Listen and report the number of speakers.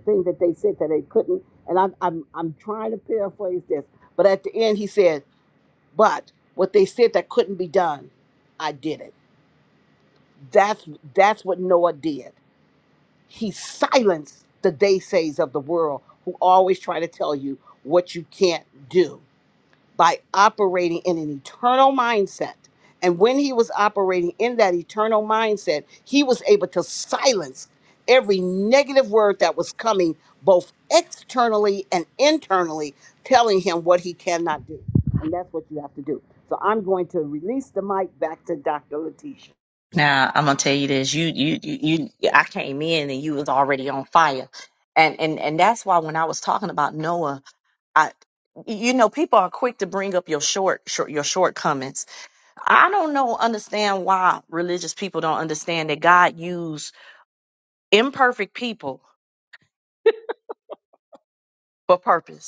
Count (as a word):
two